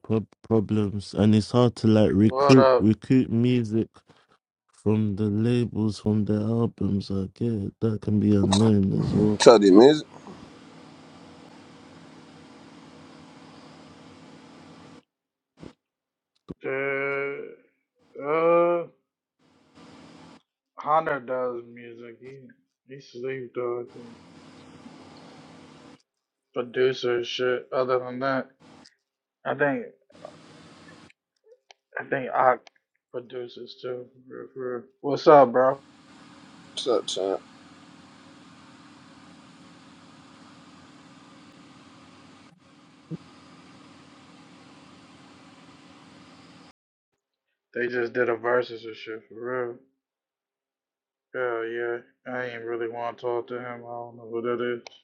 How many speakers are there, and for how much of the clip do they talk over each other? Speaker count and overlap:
3, about 2%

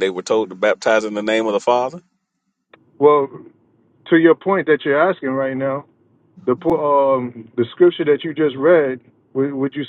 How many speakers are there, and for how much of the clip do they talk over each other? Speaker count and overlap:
2, no overlap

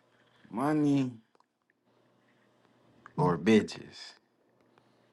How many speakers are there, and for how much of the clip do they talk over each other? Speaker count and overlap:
1, no overlap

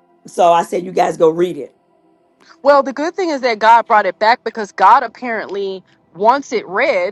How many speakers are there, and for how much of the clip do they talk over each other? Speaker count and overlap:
2, no overlap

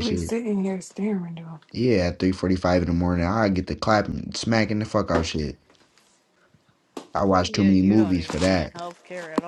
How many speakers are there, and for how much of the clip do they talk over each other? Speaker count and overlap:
3, about 17%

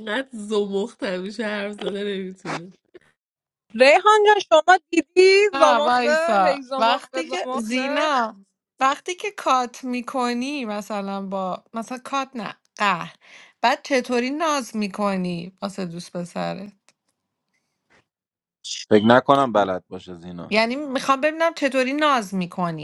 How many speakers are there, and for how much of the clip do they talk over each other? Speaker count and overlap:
4, about 11%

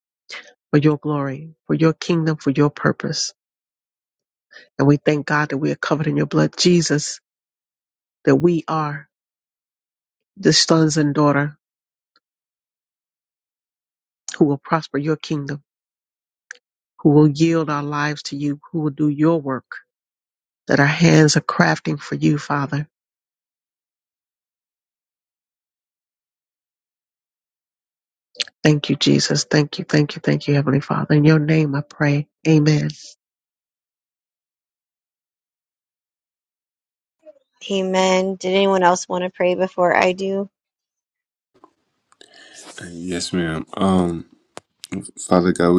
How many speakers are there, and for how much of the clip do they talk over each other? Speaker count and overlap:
3, no overlap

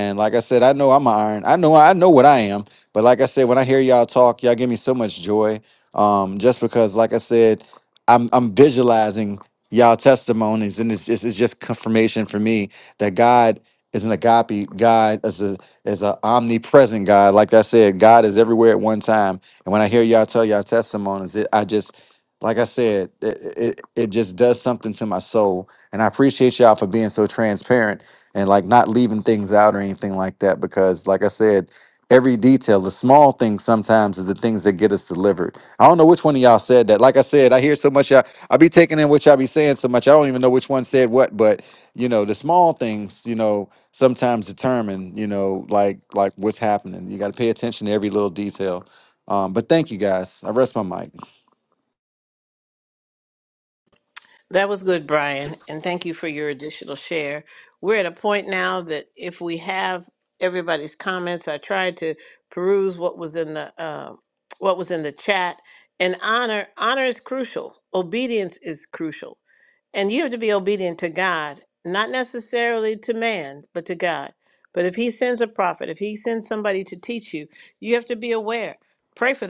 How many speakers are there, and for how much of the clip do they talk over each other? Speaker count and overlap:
2, no overlap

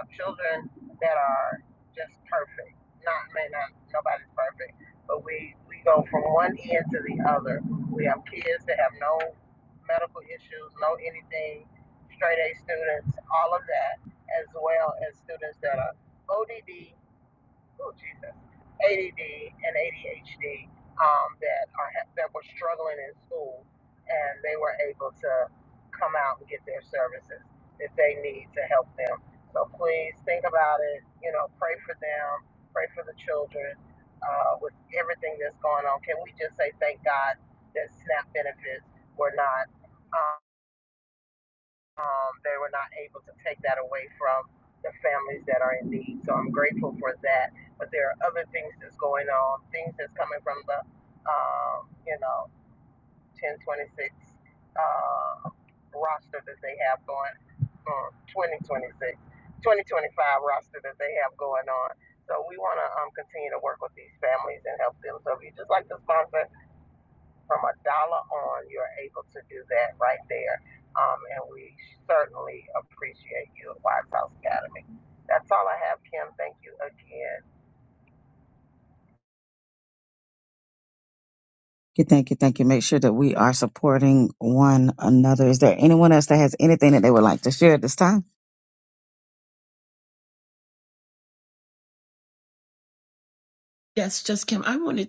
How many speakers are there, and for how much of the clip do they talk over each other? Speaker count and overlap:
3, no overlap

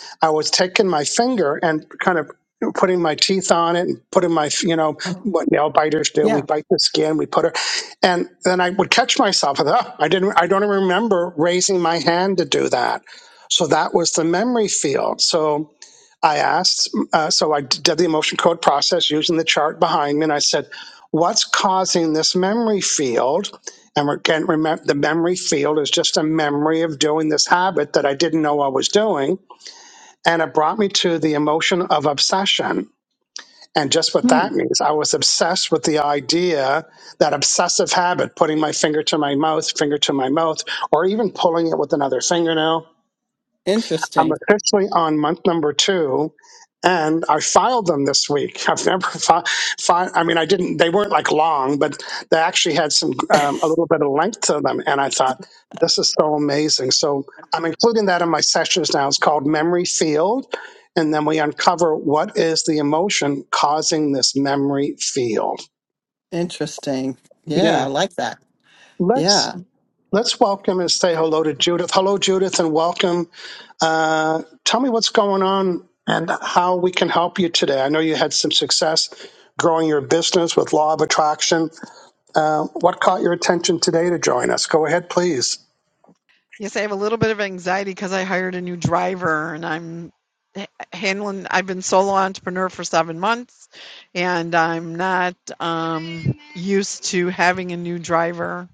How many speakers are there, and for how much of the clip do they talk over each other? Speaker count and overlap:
3, about 2%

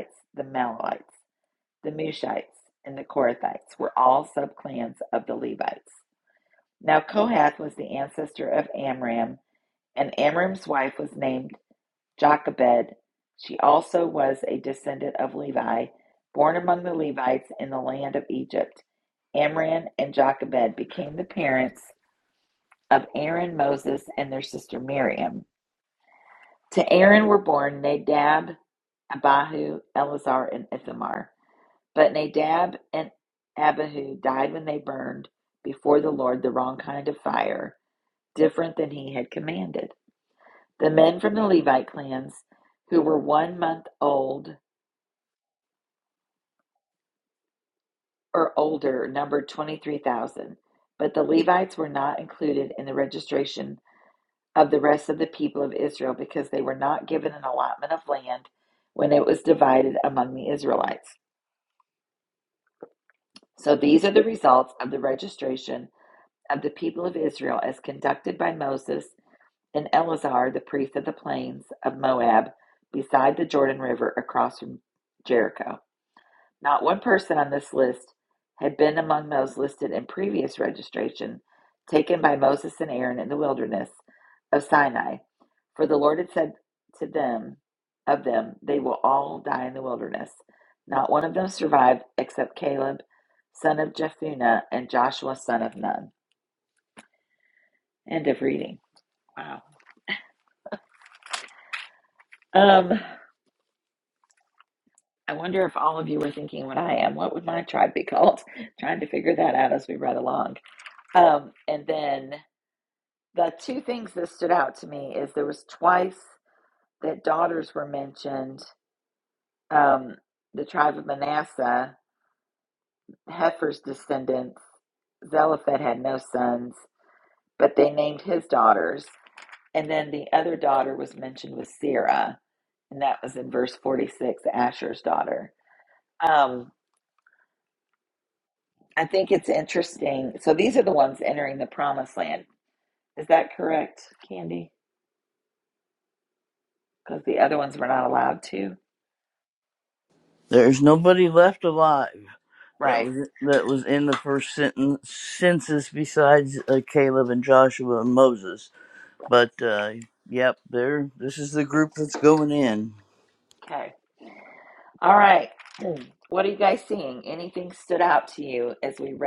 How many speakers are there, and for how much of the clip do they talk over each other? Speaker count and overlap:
2, under 1%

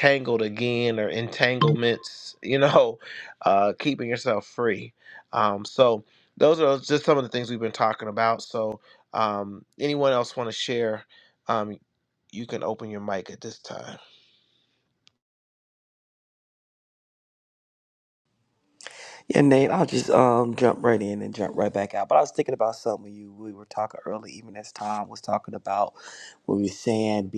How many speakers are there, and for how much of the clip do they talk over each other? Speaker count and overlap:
2, no overlap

